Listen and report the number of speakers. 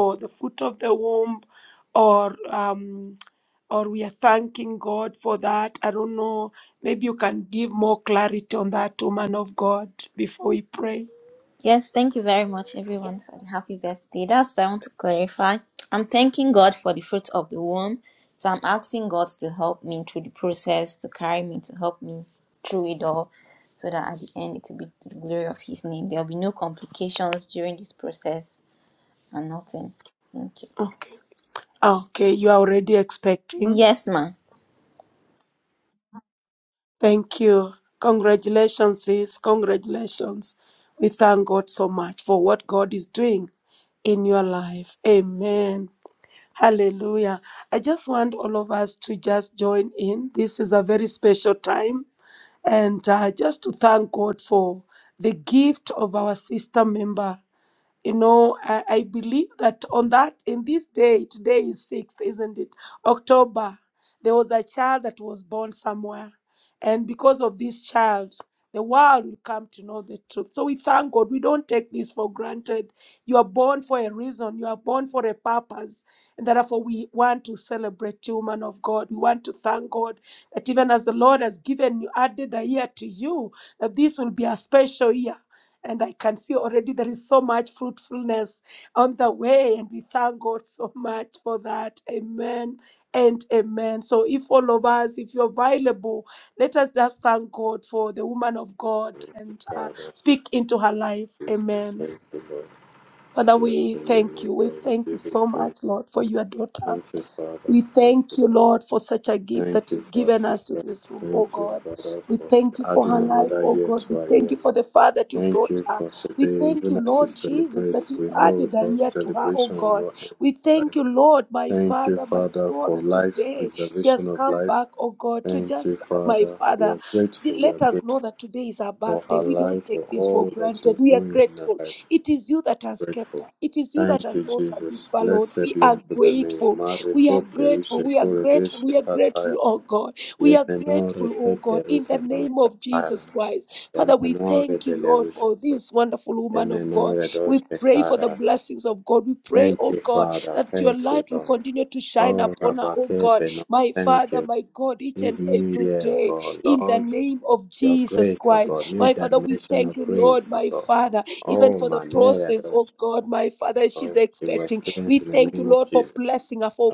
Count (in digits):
3